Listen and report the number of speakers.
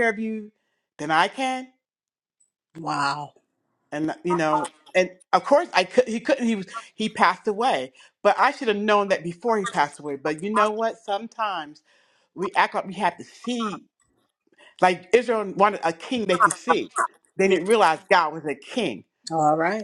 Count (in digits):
2